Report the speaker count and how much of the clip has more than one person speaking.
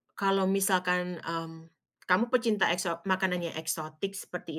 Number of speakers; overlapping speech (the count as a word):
one, no overlap